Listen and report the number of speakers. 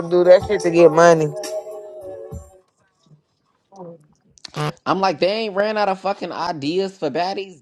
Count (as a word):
three